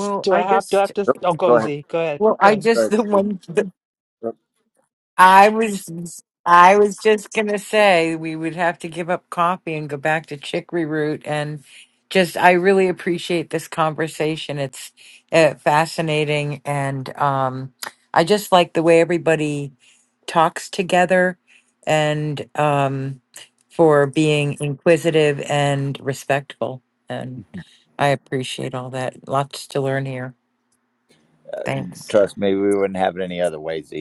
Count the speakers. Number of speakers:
3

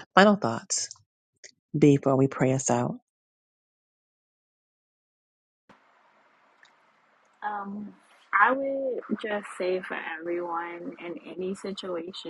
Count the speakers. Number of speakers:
2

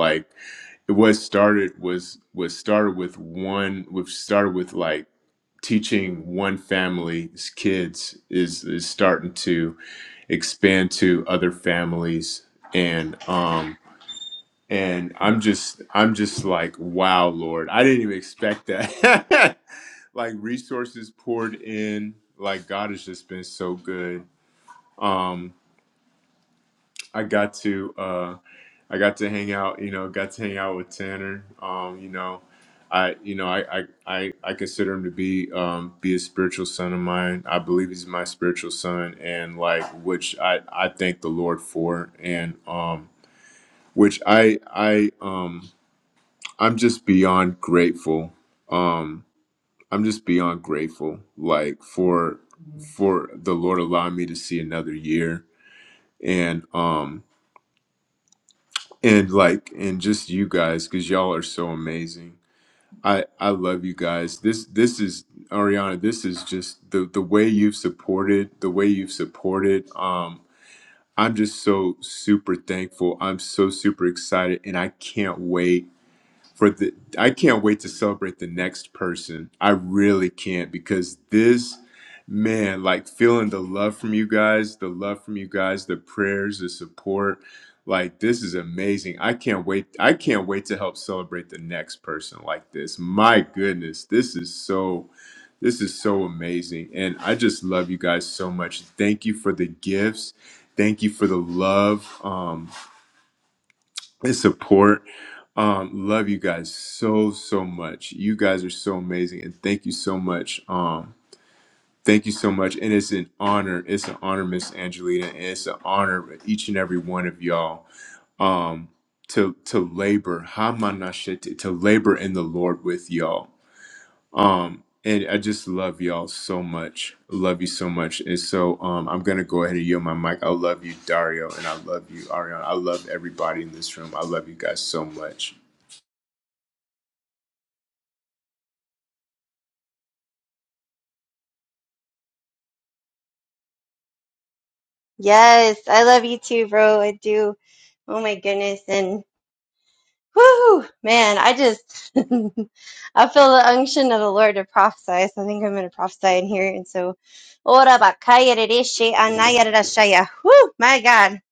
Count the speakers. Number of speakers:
2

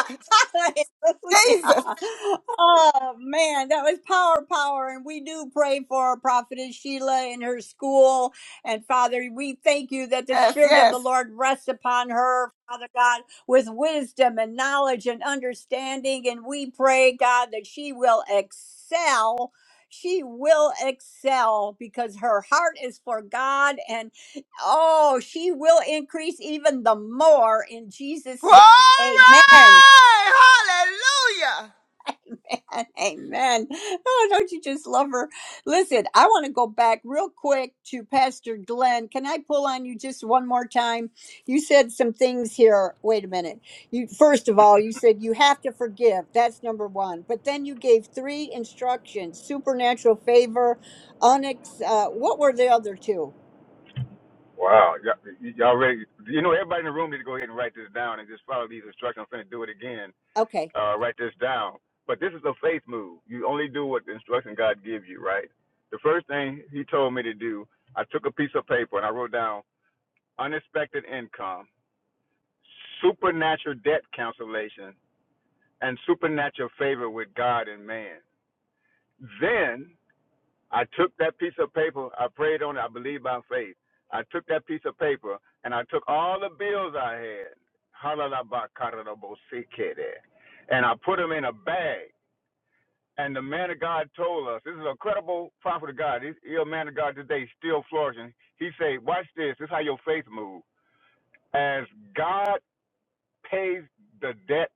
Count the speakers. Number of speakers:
3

